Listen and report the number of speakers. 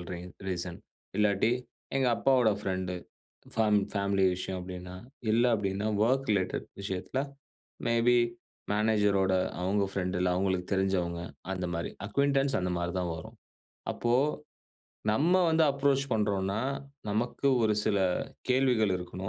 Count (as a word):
one